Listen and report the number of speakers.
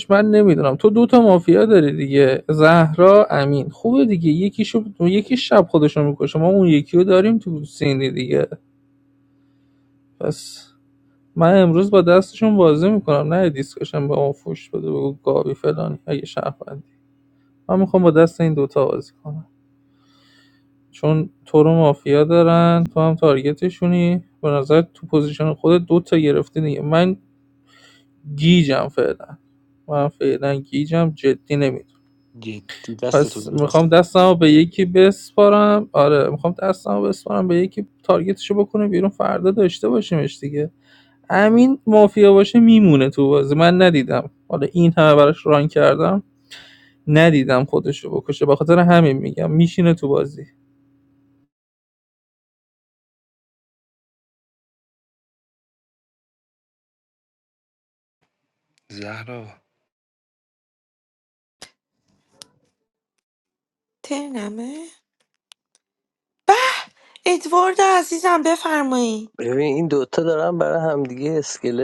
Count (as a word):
four